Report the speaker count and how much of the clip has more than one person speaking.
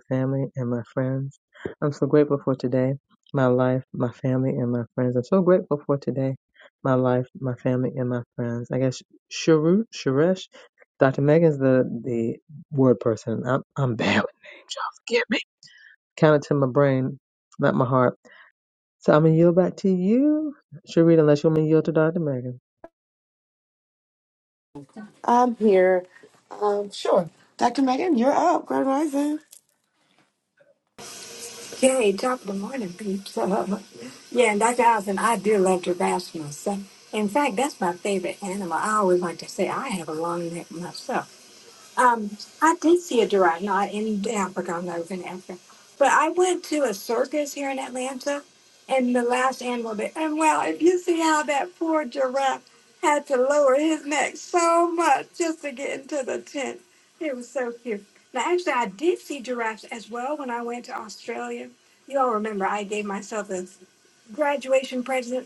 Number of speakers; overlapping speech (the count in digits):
3, no overlap